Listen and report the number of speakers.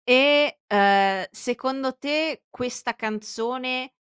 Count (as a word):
one